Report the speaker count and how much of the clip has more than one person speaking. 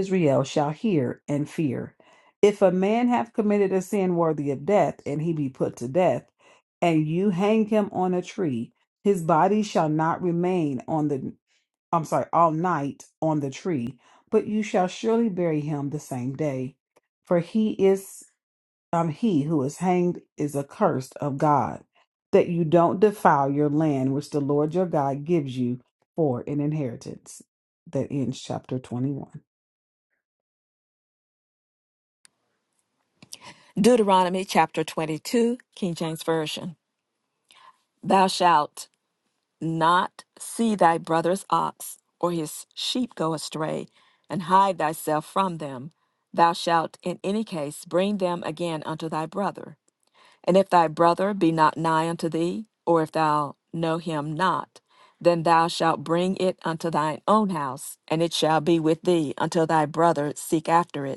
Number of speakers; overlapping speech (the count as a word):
two, no overlap